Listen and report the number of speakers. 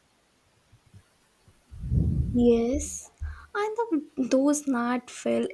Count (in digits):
1